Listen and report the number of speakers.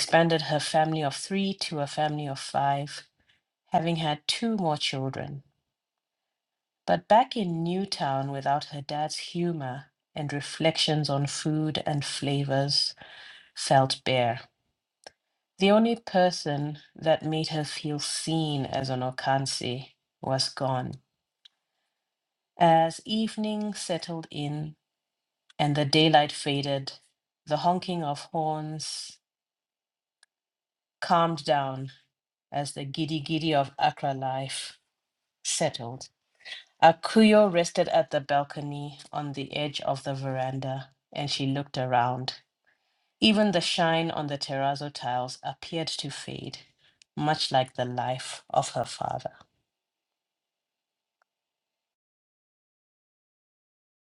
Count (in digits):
1